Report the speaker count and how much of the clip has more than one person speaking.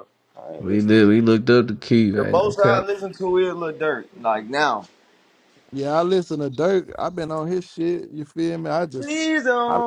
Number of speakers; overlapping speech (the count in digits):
3, about 12%